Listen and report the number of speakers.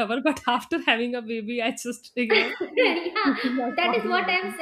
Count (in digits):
2